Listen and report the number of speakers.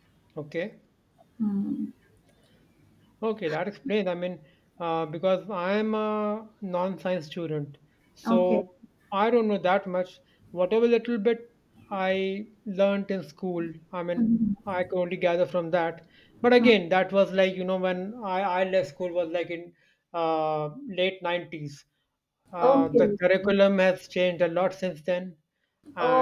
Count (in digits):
2